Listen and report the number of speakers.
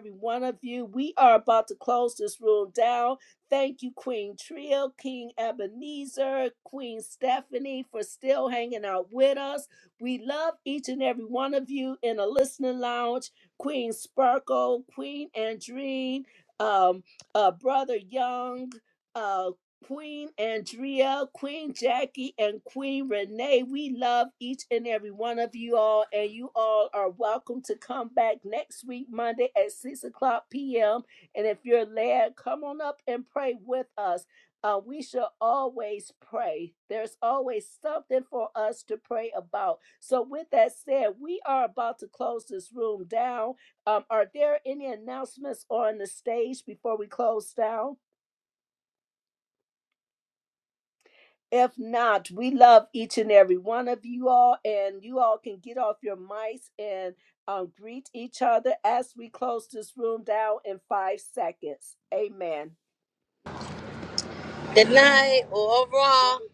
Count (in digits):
2